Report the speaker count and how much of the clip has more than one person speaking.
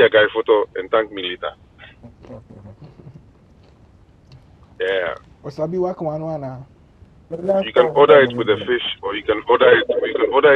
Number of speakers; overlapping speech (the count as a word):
three, about 10%